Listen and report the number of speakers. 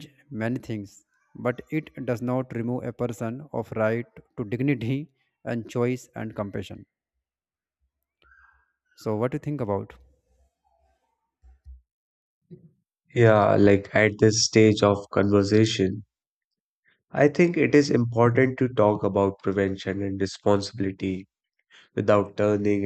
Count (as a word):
two